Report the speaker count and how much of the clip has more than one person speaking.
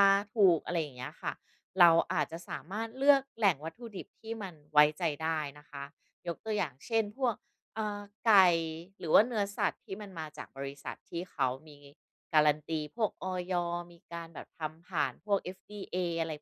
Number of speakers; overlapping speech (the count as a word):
one, no overlap